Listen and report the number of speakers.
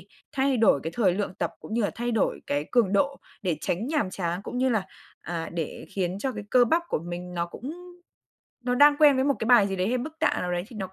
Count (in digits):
1